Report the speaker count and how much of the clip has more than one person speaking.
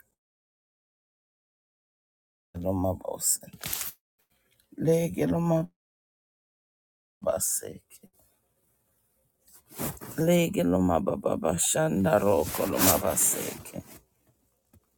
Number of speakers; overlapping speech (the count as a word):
one, no overlap